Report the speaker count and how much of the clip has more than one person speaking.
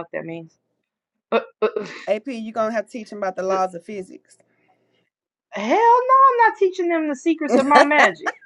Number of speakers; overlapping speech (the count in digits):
2, about 1%